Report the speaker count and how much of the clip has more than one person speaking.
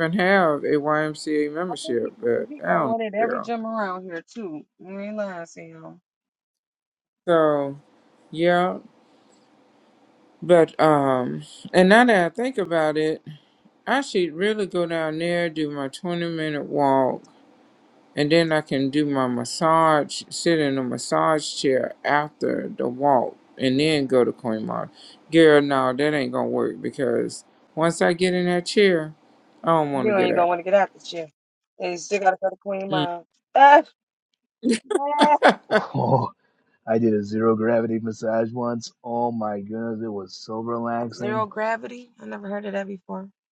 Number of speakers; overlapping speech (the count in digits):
3, about 5%